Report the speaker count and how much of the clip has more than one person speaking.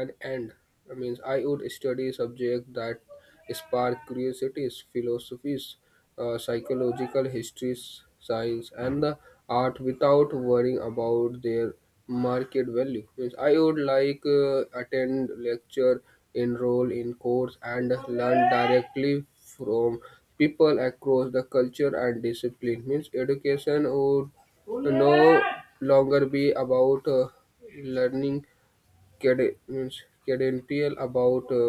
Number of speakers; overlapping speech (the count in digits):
1, no overlap